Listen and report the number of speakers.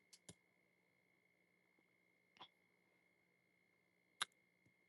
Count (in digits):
0